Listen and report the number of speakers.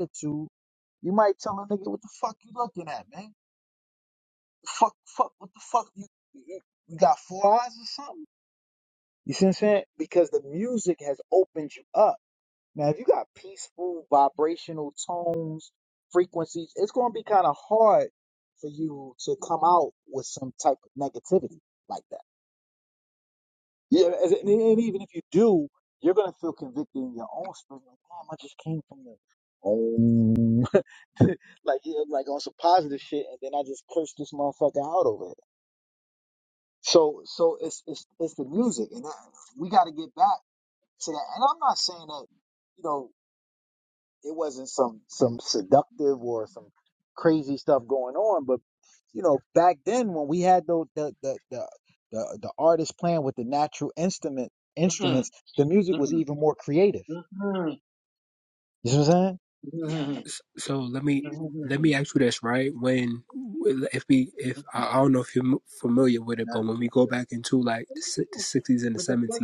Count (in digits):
3